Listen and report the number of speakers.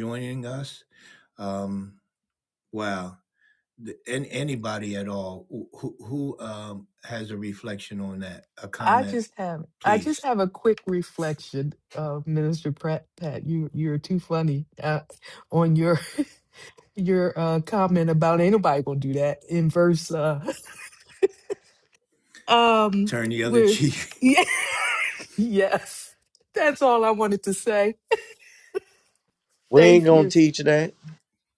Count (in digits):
3